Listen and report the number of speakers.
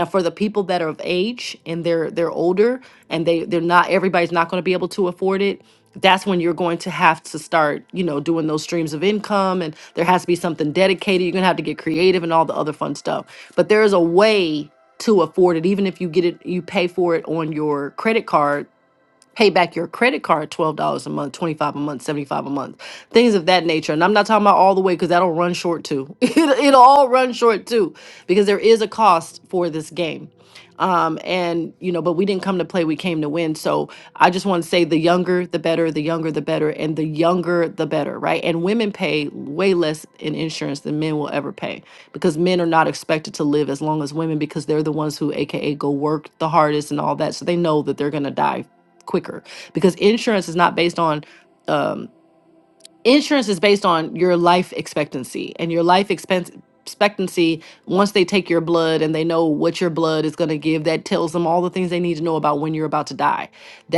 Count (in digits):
1